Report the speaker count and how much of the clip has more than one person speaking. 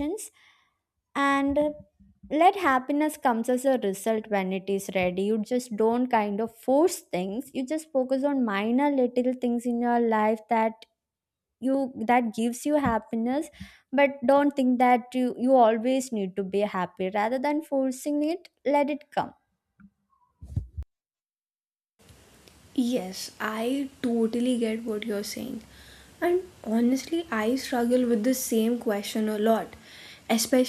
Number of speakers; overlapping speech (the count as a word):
two, no overlap